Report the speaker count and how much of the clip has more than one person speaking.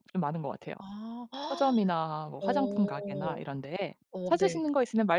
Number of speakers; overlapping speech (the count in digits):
2, about 25%